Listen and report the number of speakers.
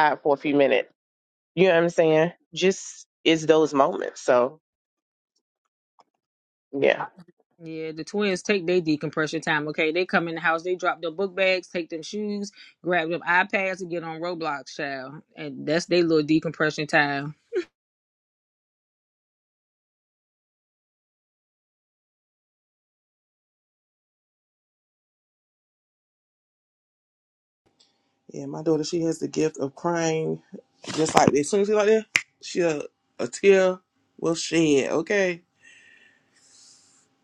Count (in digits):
3